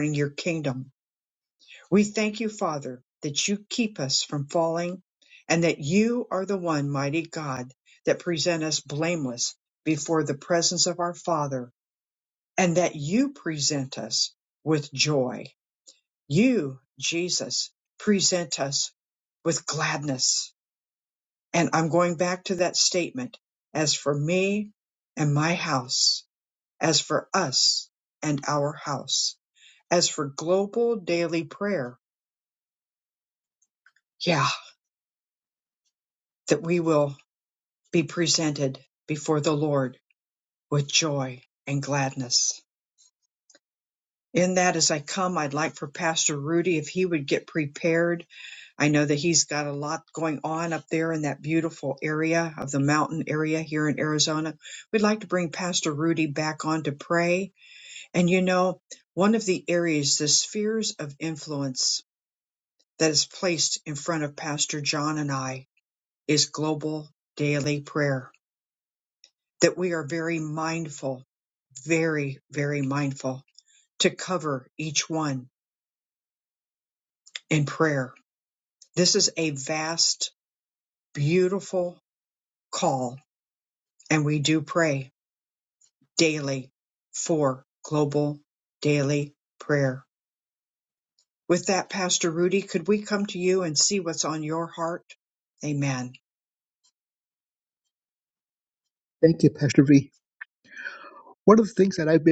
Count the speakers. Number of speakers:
2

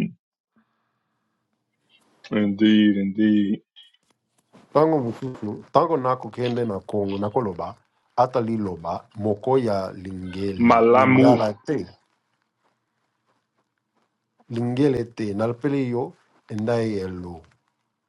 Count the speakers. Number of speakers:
2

